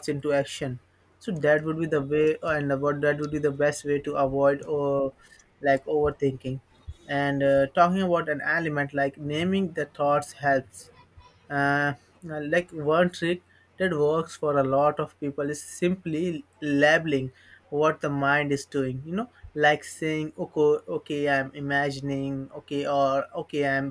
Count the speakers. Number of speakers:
1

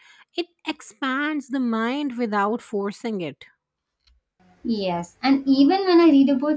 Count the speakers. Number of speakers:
2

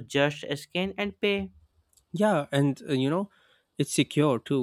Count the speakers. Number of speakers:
2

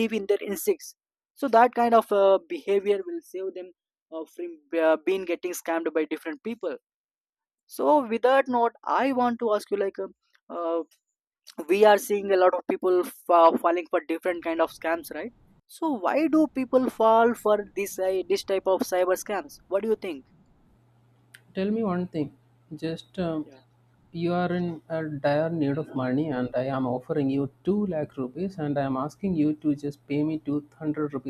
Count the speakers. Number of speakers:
2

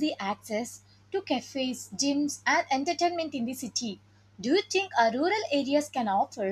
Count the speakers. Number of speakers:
1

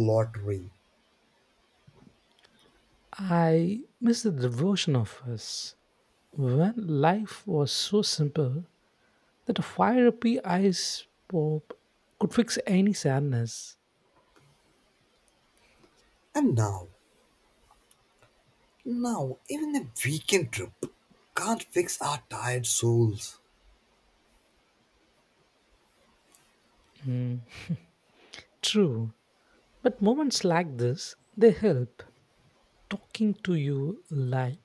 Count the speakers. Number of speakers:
2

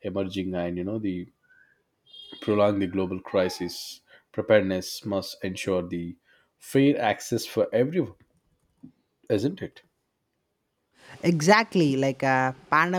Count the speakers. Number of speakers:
2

